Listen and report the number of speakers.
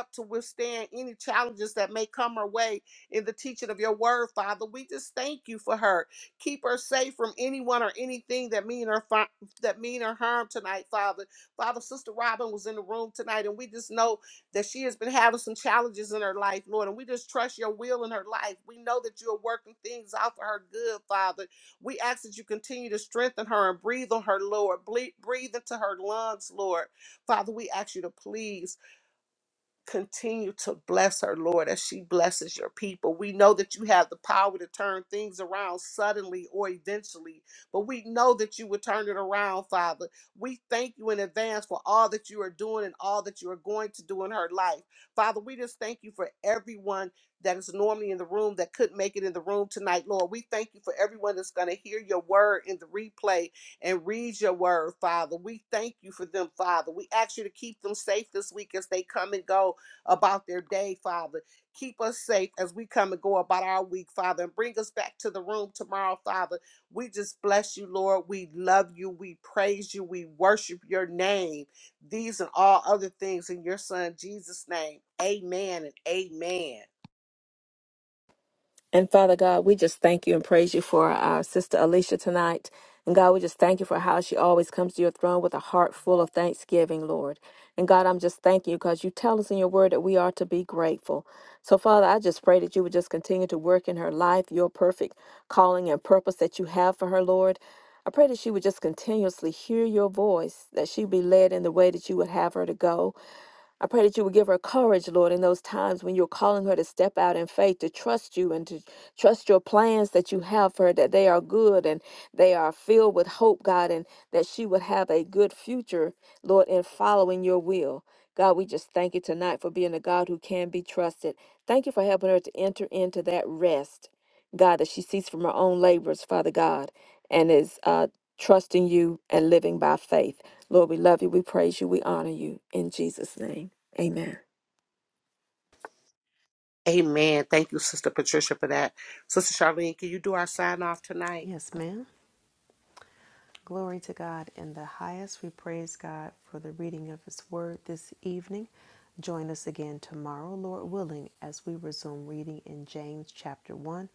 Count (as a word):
three